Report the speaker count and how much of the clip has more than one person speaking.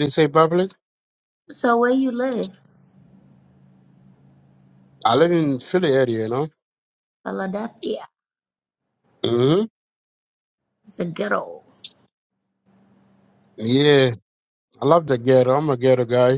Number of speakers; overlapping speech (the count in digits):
2, no overlap